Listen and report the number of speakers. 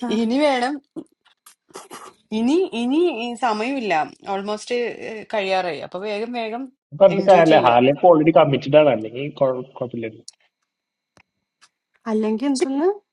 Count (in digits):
3